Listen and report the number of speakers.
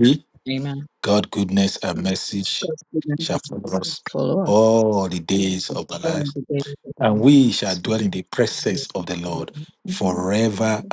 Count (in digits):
2